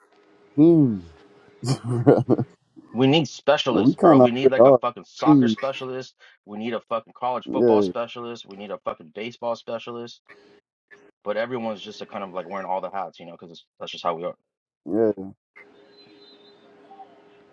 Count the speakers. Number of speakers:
two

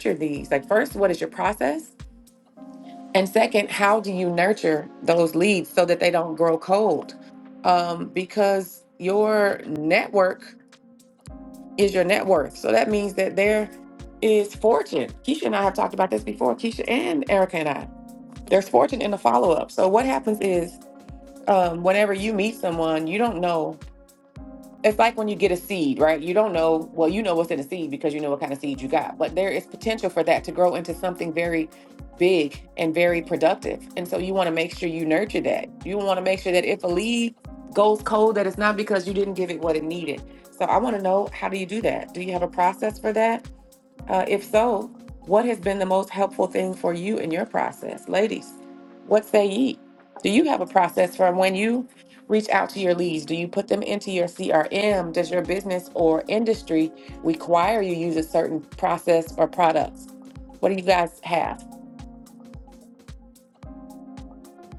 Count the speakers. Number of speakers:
one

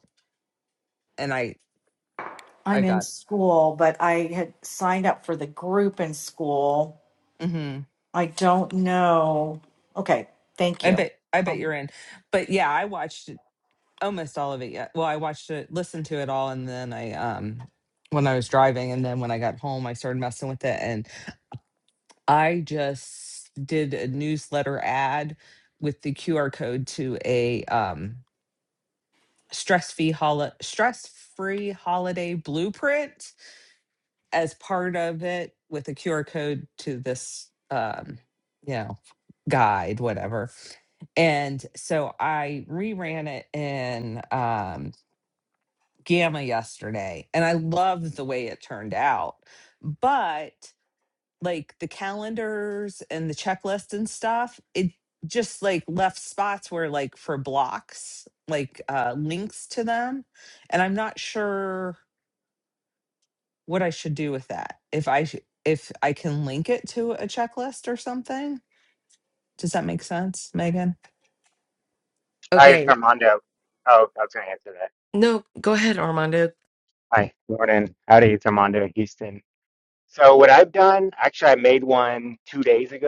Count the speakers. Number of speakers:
four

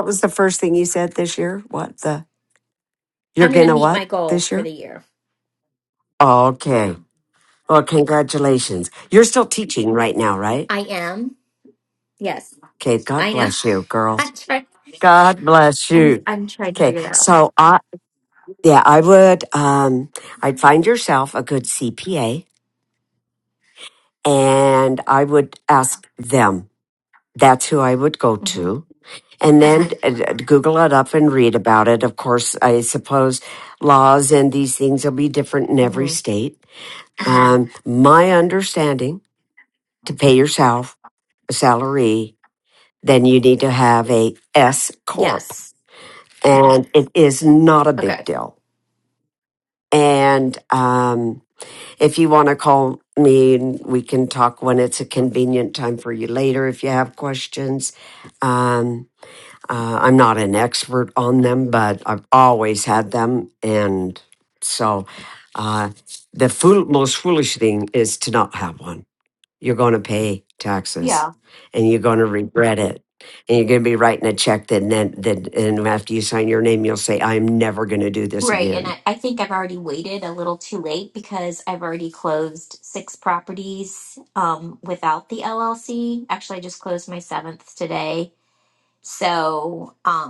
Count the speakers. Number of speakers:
two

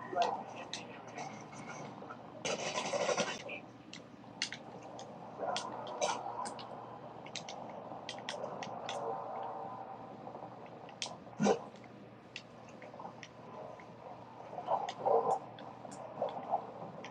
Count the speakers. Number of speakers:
zero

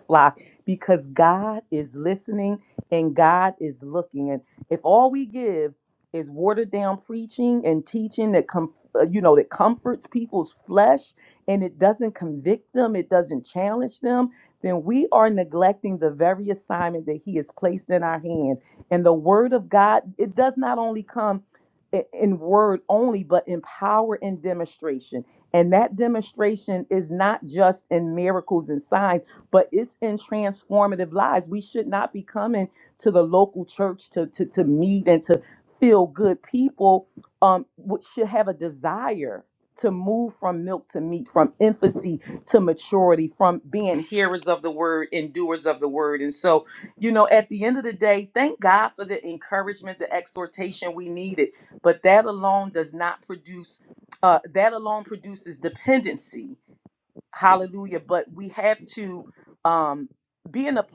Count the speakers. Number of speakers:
one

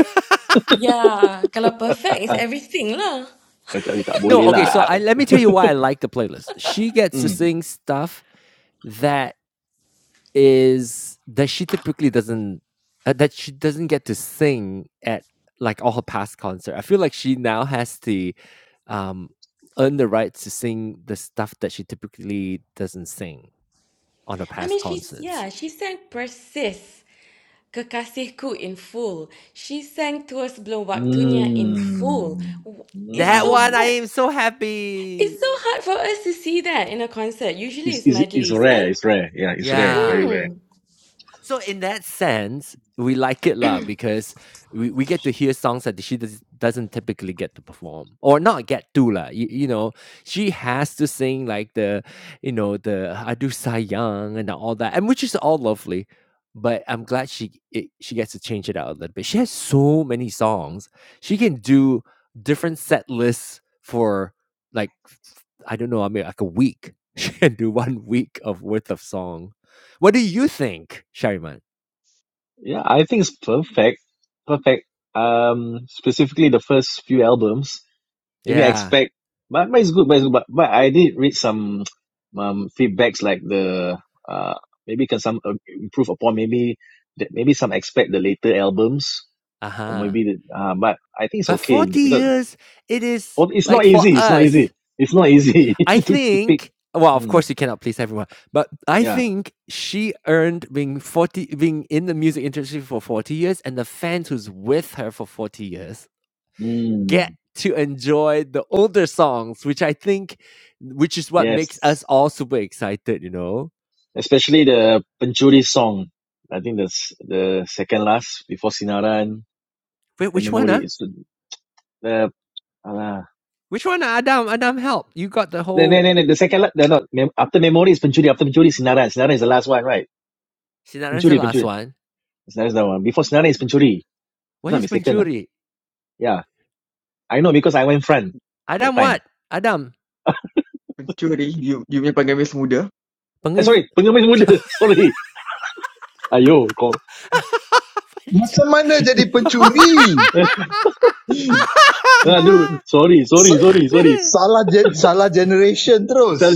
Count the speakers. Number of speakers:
five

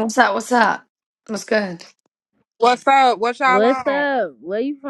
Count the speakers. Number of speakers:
three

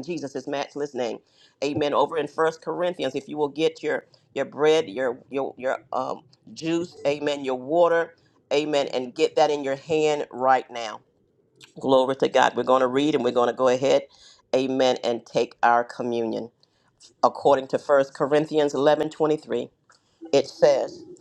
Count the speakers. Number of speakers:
one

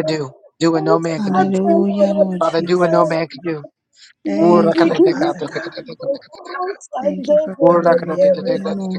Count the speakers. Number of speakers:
three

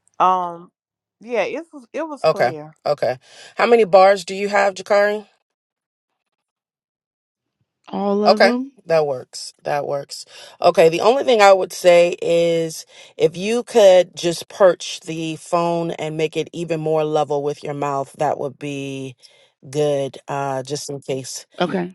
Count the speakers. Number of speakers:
three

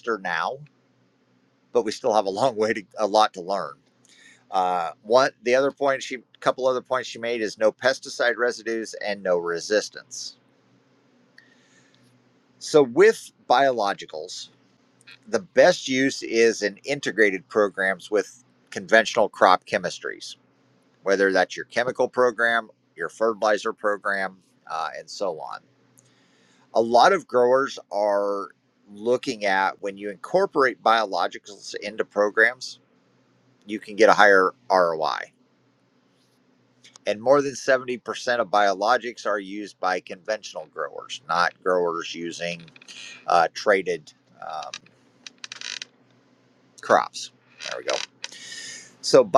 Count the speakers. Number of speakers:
one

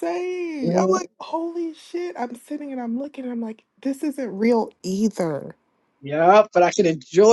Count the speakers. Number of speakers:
two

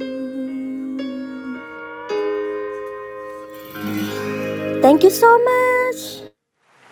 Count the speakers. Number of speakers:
one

